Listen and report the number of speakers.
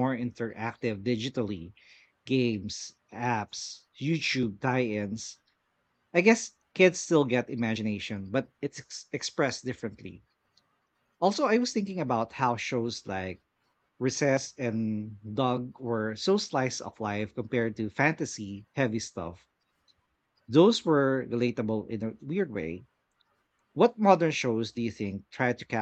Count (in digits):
1